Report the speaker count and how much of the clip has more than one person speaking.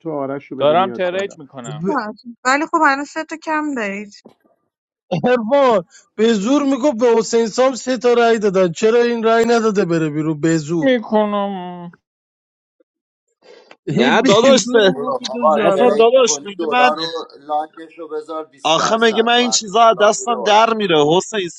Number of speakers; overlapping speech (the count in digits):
6, about 27%